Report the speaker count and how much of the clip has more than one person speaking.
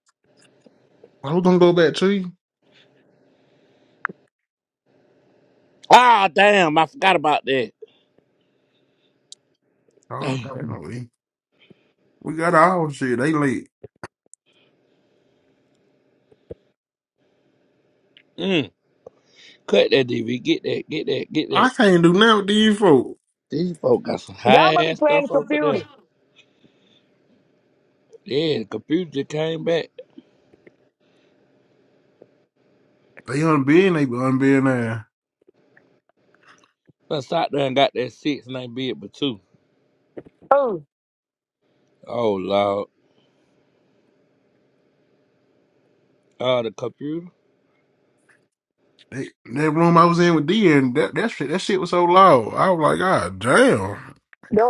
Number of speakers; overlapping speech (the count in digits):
3, about 3%